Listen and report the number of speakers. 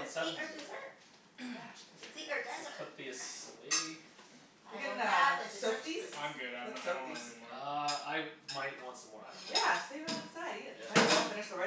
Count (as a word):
four